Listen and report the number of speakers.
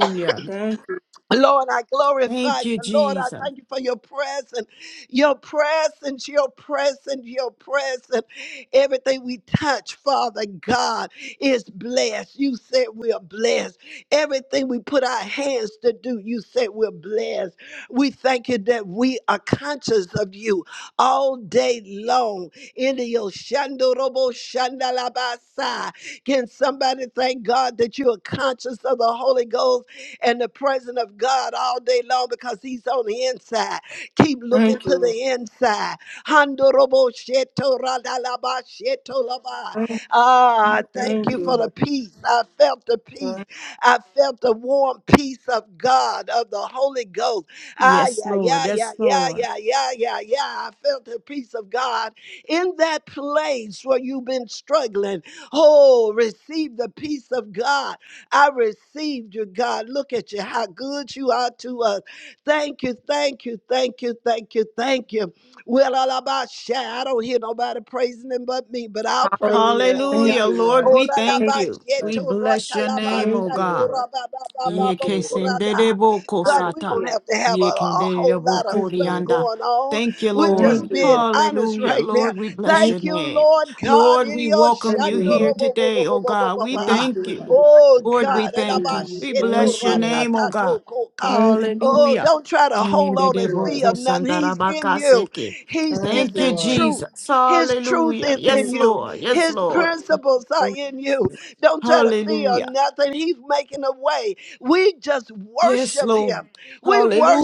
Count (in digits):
3